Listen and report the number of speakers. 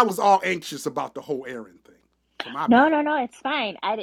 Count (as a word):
two